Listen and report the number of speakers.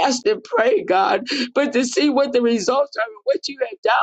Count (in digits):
1